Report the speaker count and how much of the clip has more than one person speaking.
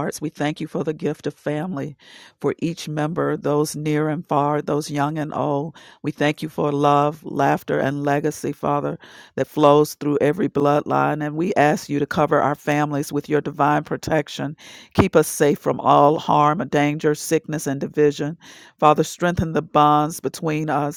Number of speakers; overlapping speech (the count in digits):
1, no overlap